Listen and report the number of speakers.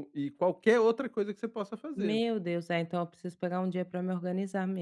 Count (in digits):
2